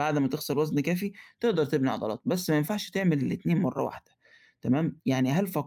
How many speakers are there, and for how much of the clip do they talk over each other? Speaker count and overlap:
1, no overlap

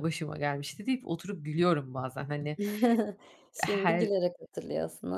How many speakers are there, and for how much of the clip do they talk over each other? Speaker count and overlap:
2, about 8%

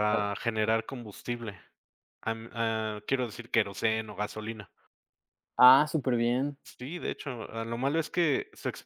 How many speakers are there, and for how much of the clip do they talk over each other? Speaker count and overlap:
2, about 3%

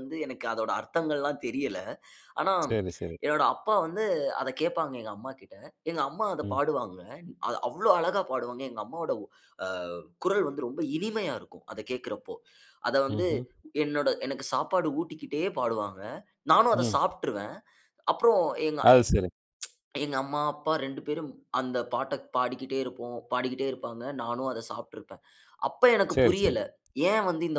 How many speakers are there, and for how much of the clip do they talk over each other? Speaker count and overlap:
2, about 4%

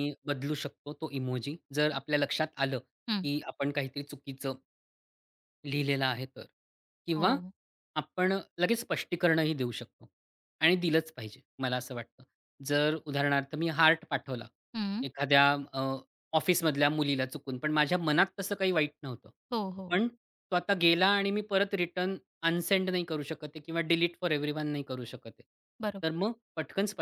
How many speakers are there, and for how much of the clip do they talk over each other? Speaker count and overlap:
2, about 1%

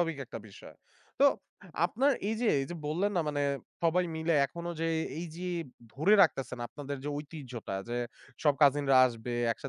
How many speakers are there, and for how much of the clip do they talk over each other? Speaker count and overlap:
1, no overlap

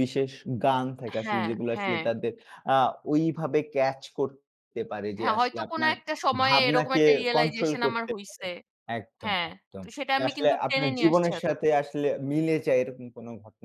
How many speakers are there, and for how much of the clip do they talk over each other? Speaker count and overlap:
2, about 40%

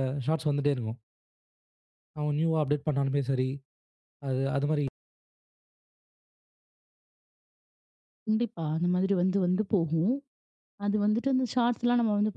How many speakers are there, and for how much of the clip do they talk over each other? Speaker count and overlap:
2, no overlap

